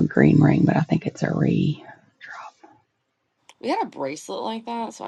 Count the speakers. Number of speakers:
2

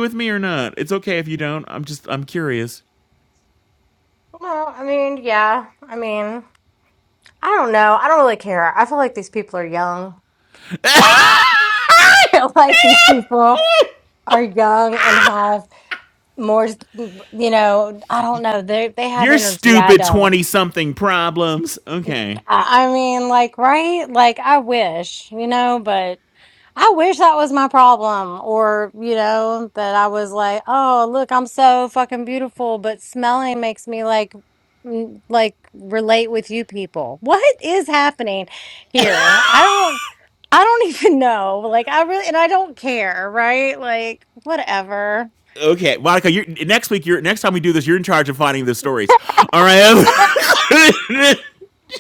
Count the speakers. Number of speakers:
2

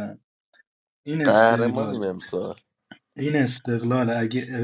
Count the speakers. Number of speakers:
2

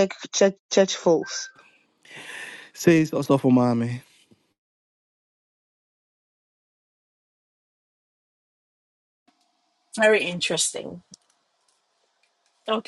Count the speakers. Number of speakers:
3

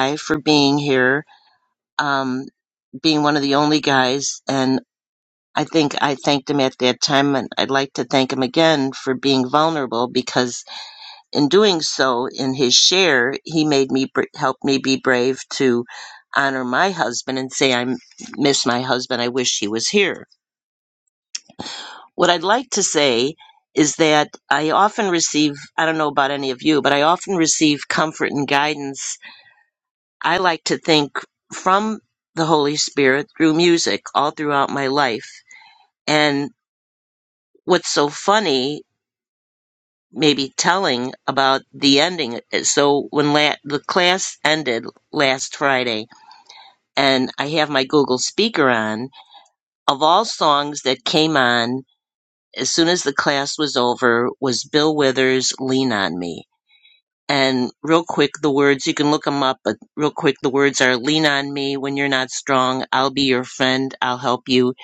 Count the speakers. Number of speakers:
1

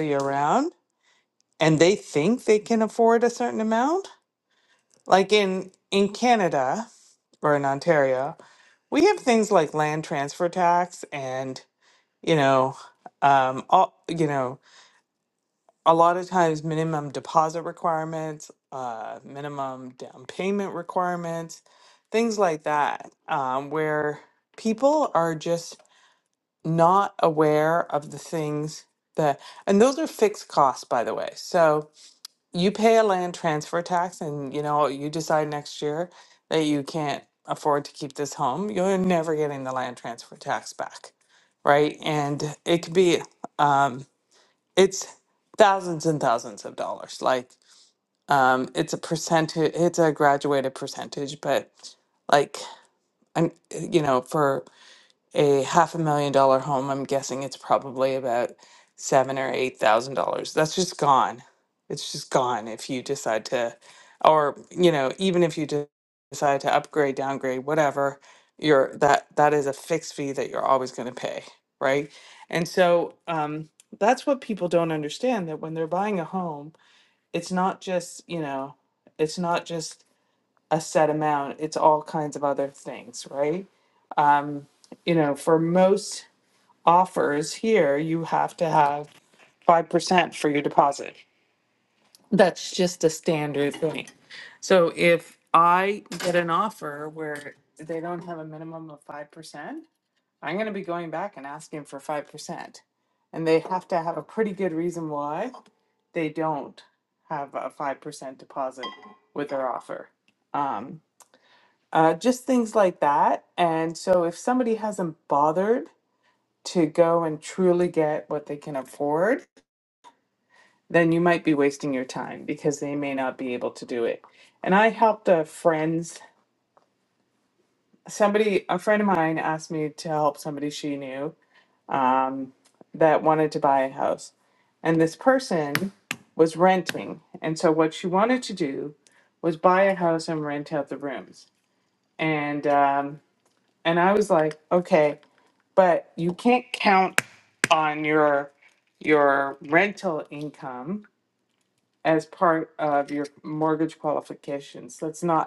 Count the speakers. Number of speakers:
1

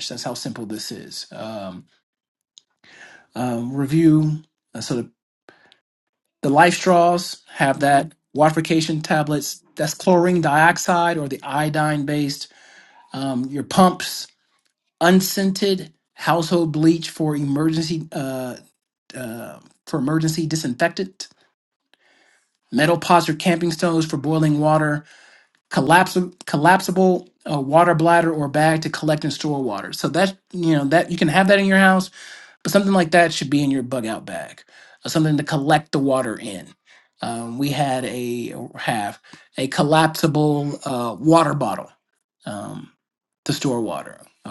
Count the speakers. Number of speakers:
1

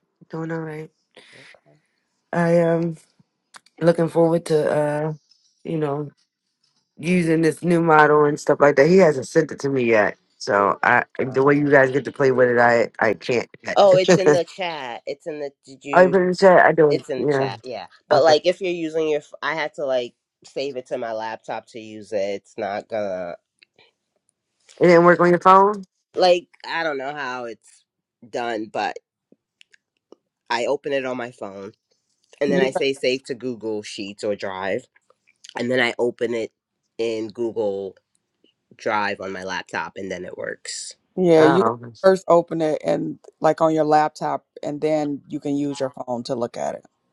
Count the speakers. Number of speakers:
3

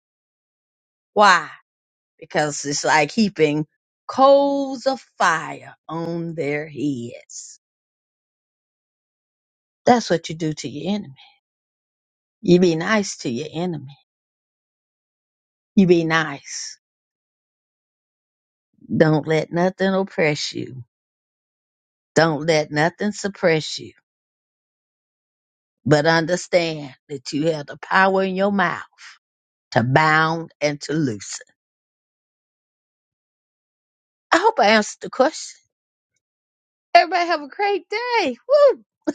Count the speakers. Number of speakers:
1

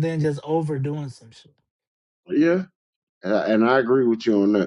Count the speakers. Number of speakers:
2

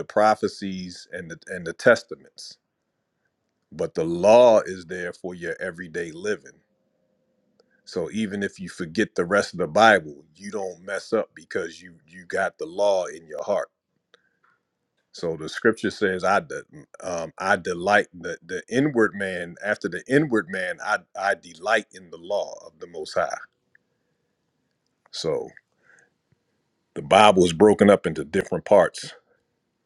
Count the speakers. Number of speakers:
1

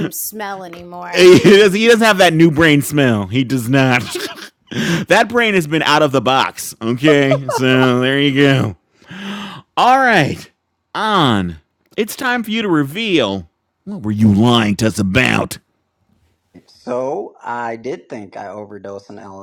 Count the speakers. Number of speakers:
3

